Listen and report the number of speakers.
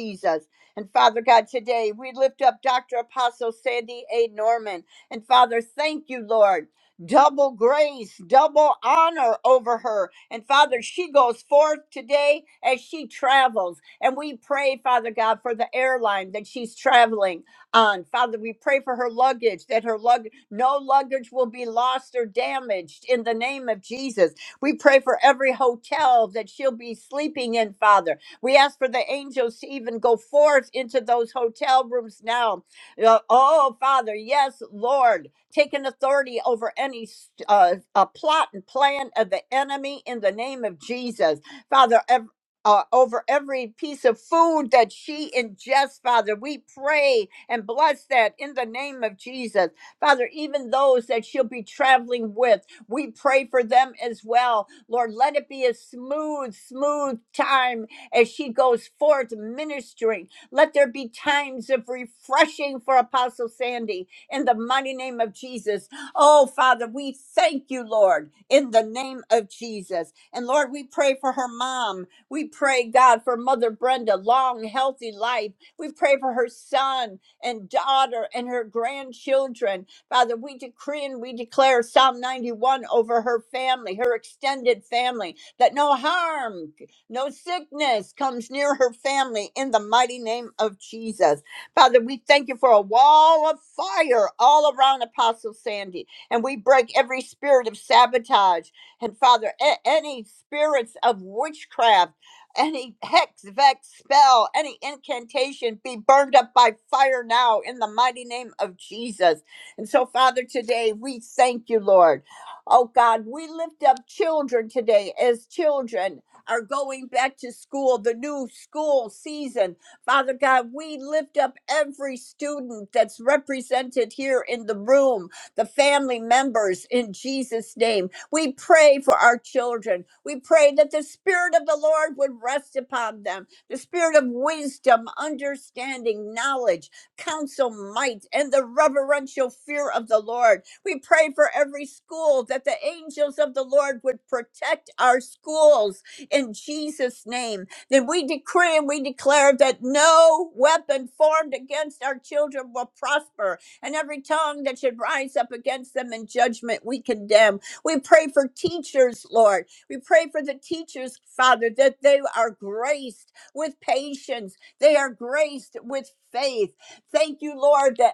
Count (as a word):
one